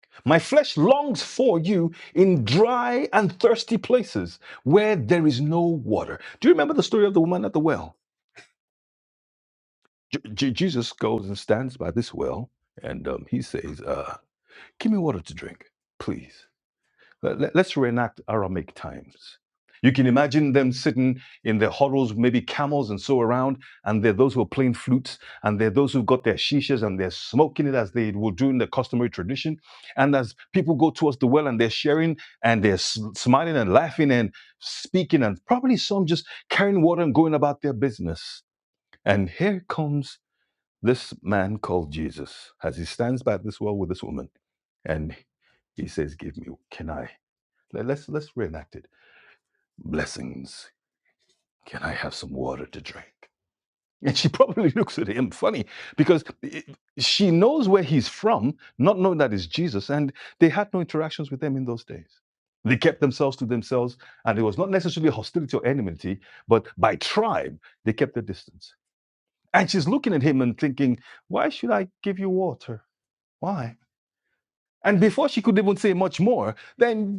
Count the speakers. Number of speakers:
one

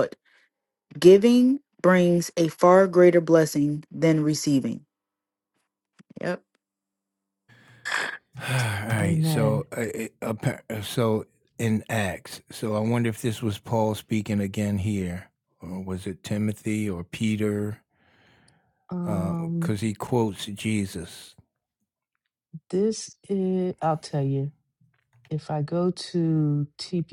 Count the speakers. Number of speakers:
three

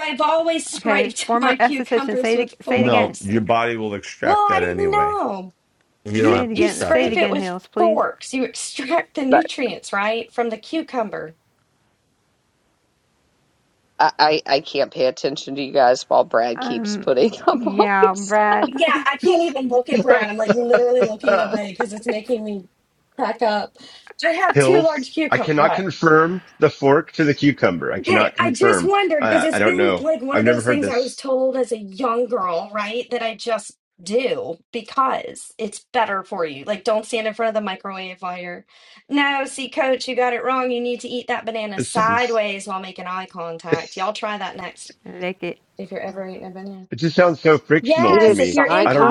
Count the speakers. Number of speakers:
five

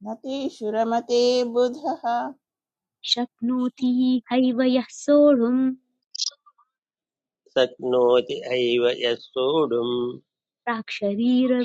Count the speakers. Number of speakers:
three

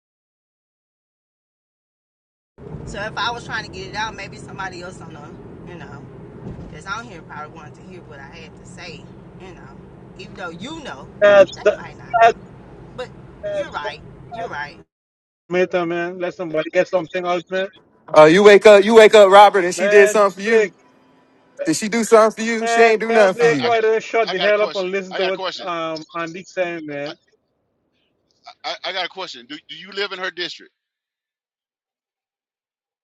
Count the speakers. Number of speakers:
four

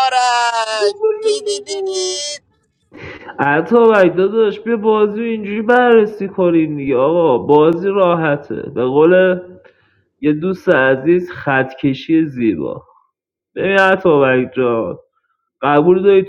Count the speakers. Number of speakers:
two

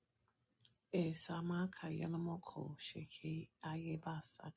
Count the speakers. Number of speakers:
one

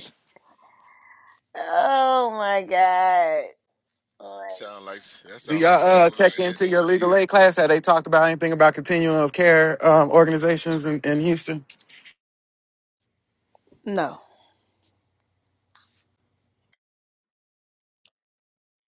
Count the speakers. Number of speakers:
three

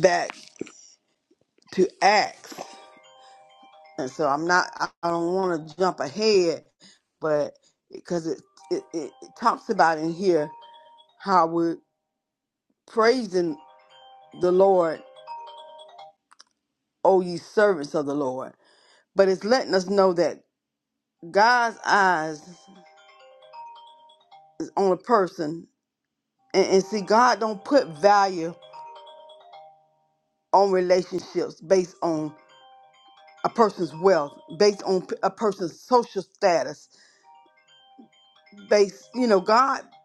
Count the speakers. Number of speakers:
one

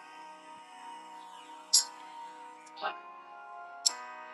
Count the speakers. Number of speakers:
zero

